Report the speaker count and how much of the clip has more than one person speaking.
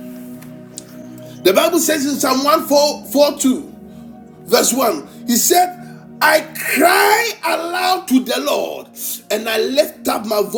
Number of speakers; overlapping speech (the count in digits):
1, no overlap